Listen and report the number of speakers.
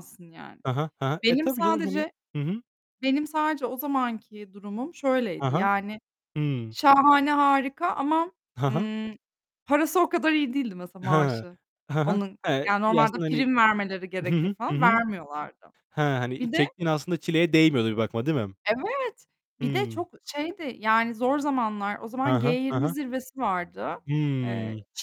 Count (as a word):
two